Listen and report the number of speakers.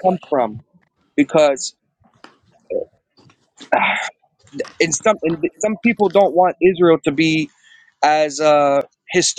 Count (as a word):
one